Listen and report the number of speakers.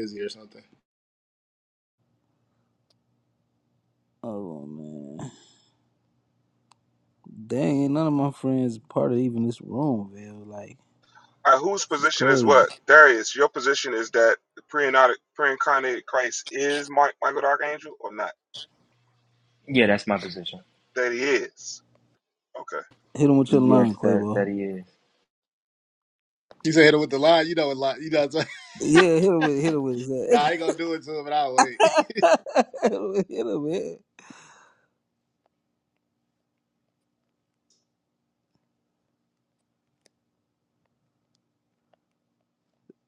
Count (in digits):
4